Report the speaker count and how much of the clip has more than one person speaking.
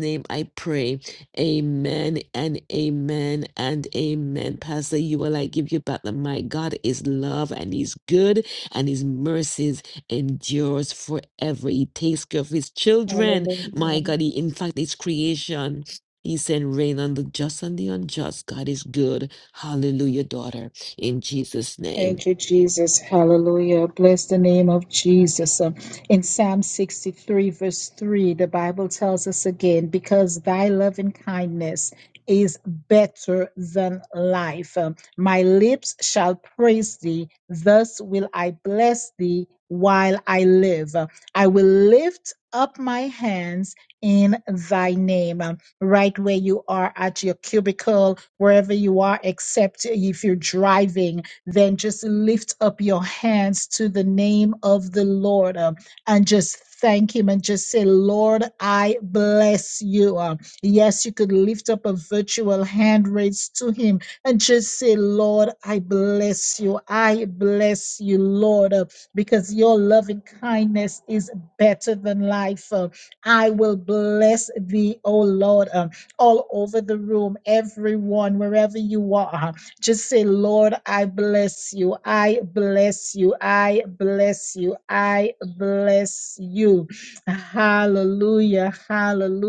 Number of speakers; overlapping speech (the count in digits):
2, about 1%